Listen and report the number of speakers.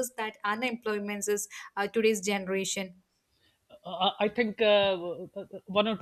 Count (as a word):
two